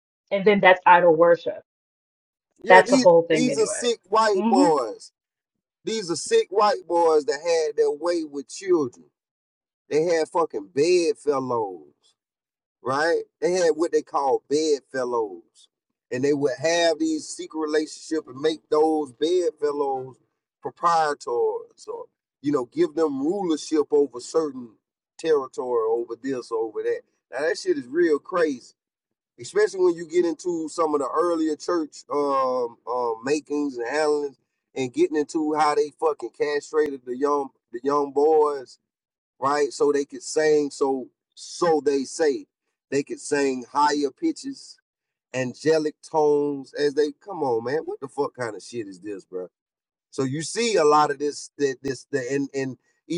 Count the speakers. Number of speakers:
2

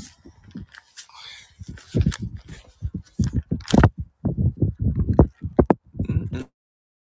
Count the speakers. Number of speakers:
0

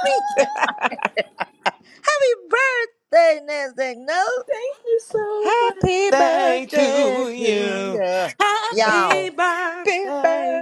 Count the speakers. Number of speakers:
4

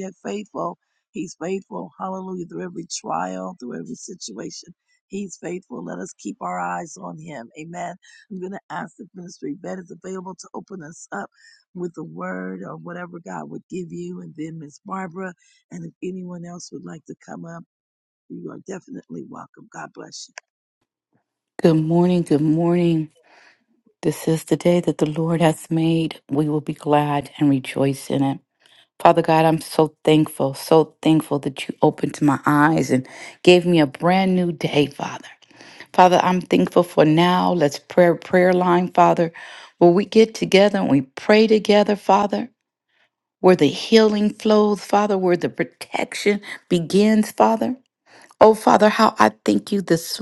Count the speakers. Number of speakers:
2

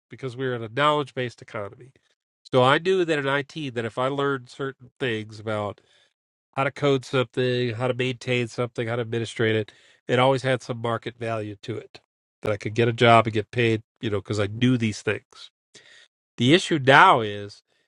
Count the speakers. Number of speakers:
1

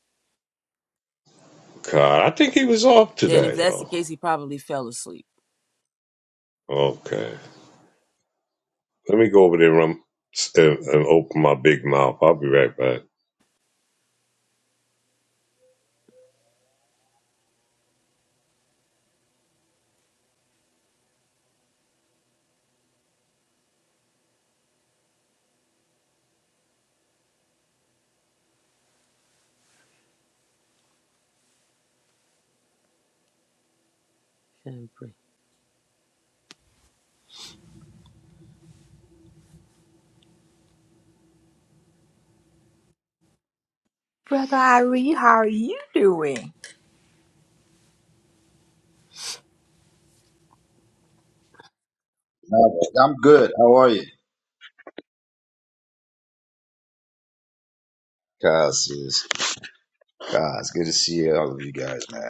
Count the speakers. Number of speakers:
4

